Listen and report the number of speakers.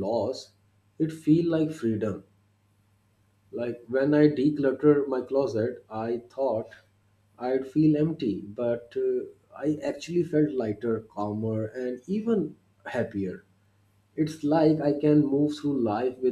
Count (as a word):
one